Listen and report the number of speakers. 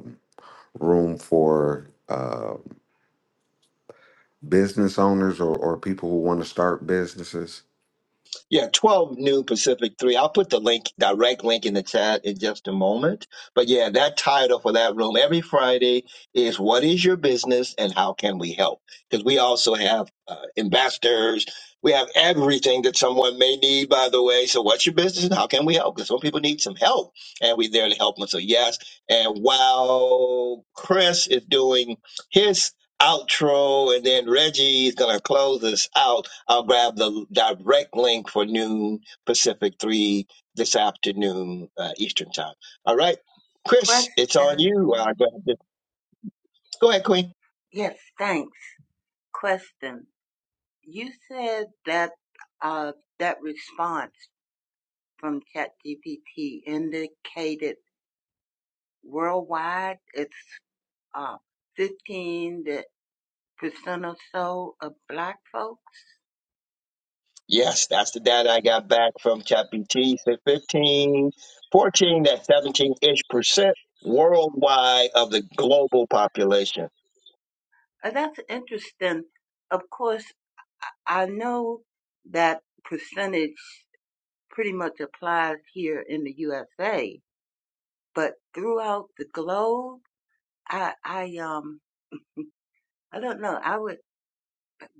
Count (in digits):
3